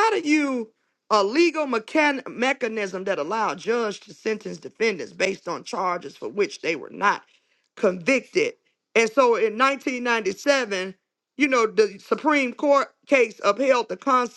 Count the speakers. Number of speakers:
one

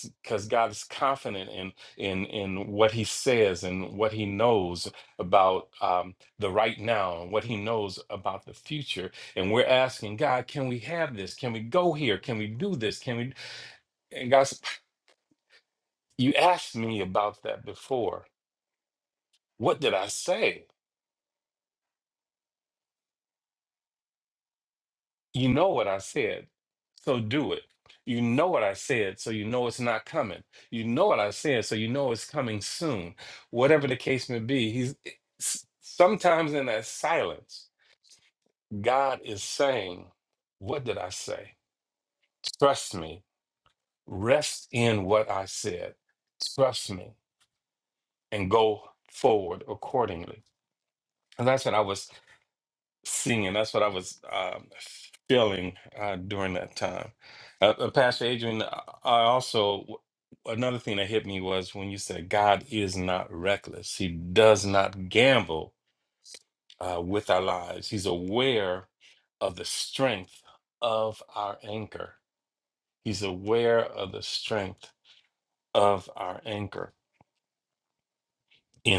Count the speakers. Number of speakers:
one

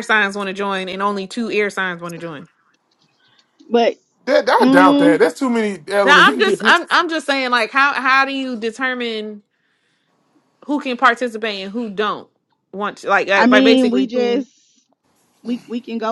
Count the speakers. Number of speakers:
three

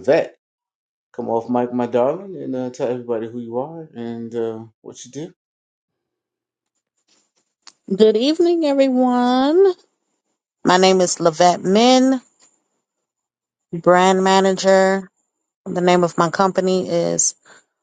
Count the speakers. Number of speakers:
two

